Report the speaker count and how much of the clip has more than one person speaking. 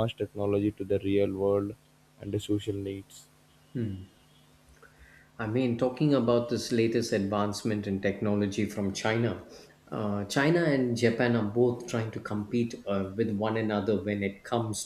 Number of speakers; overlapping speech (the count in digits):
2, no overlap